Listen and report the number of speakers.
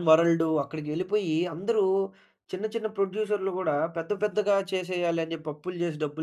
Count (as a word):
one